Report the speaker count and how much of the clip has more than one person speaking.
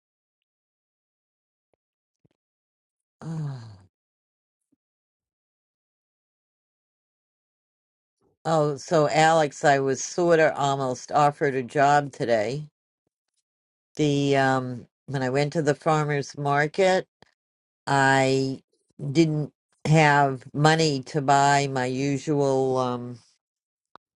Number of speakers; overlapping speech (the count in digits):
1, no overlap